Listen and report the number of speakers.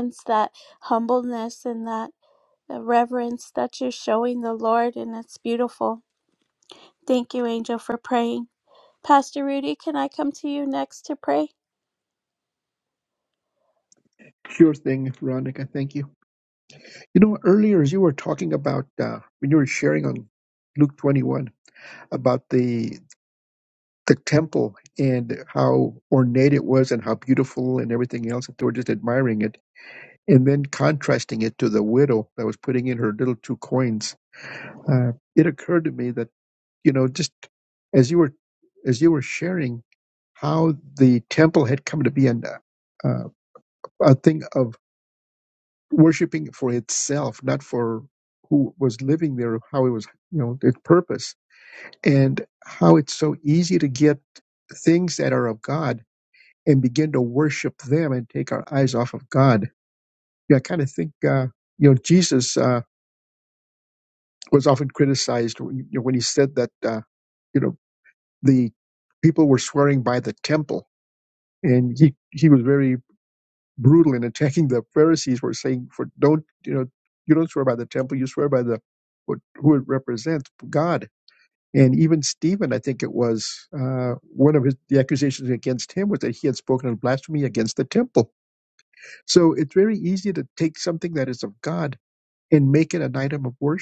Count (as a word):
two